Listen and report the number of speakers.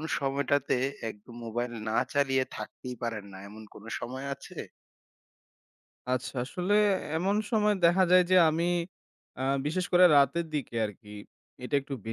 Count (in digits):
2